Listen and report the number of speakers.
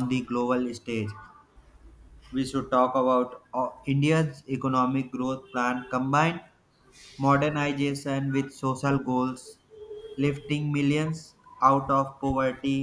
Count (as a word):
one